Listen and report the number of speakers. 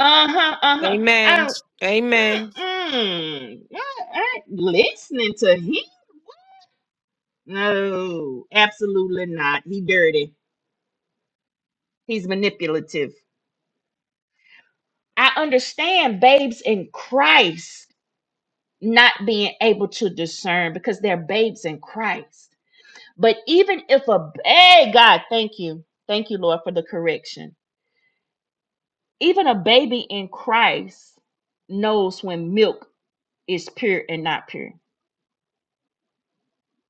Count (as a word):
two